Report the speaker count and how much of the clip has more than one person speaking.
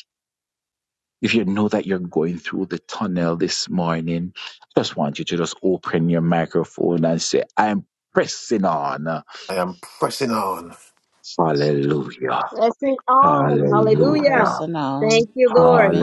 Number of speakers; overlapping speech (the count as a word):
four, about 13%